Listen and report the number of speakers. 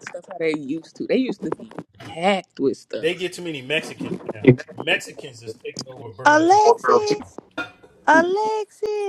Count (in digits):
3